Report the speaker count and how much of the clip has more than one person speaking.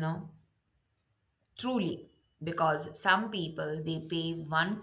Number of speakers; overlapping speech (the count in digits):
1, no overlap